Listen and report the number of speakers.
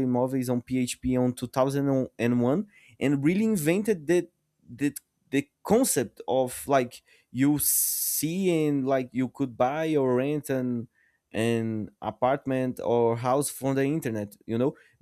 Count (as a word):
one